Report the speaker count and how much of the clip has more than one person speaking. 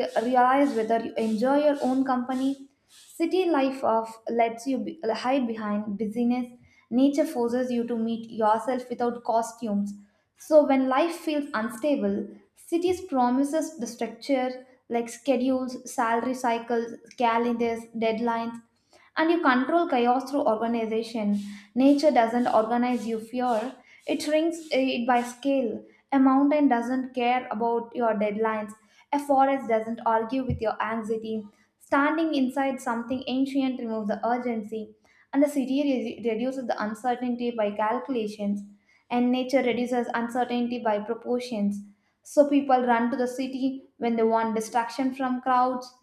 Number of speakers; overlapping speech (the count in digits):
1, no overlap